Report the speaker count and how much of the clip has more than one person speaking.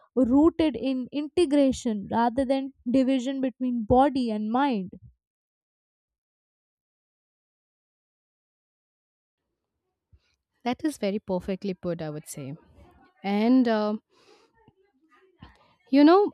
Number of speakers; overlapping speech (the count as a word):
two, no overlap